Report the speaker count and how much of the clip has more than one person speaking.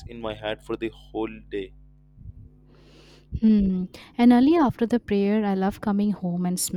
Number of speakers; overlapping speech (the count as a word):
two, no overlap